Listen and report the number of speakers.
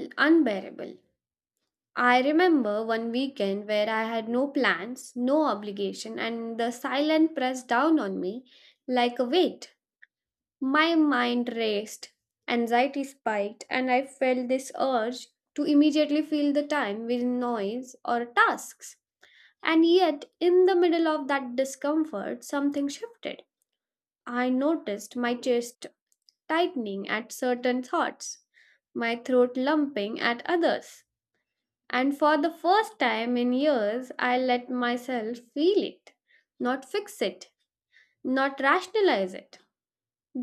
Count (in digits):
1